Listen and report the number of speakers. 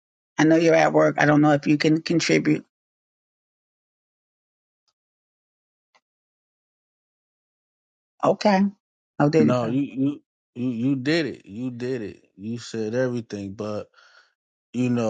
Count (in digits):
2